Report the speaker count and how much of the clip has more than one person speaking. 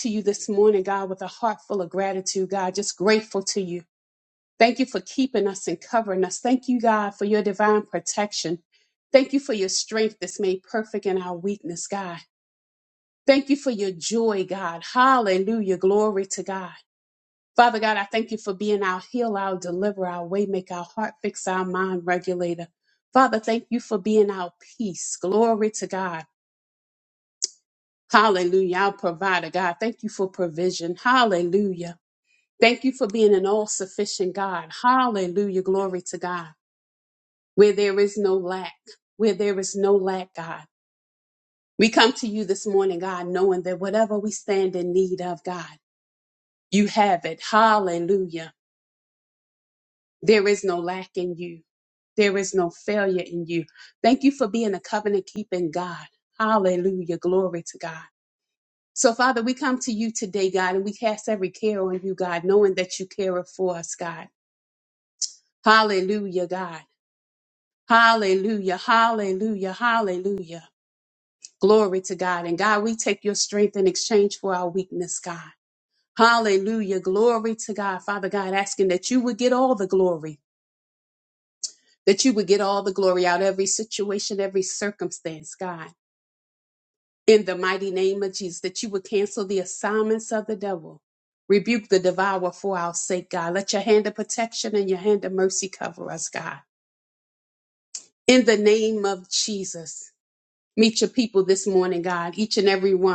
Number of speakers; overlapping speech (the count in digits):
1, no overlap